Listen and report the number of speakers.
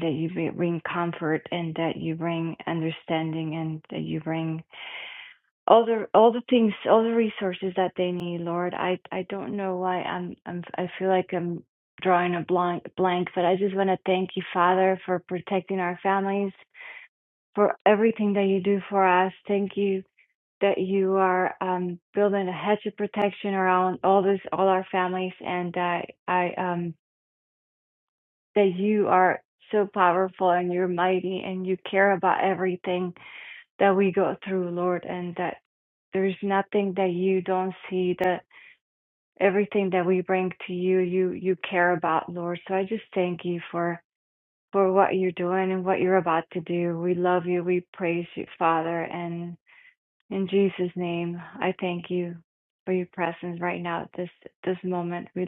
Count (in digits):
1